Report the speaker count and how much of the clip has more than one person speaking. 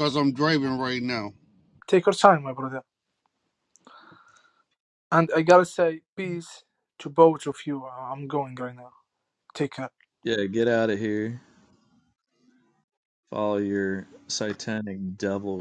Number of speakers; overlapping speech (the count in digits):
3, no overlap